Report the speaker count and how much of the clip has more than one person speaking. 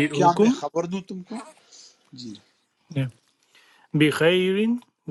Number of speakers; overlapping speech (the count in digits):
2, about 9%